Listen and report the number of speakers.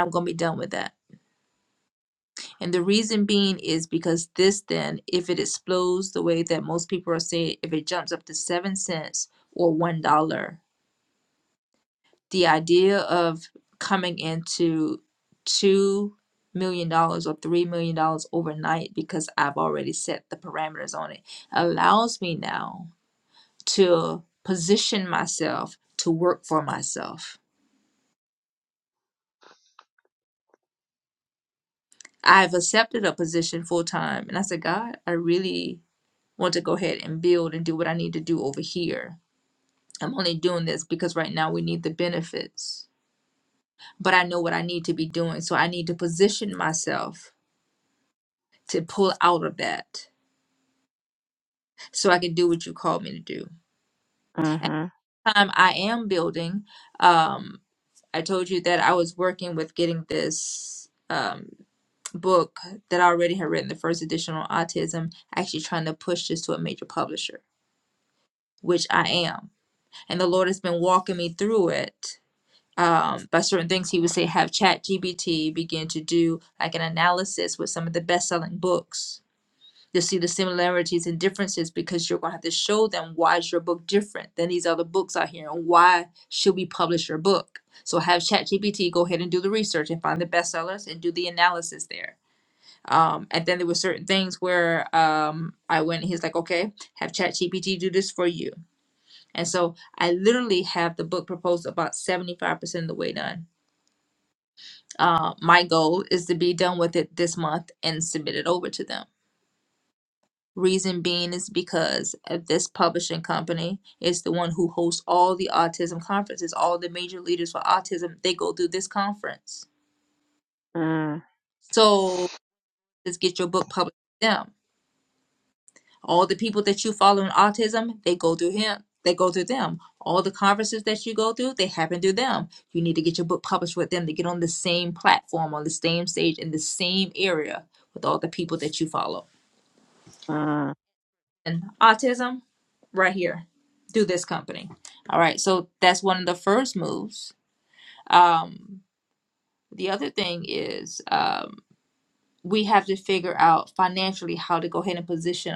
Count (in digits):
2